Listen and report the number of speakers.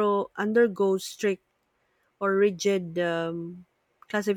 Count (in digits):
1